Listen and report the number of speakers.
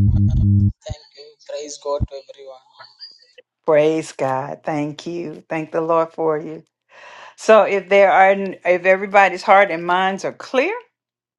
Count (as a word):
two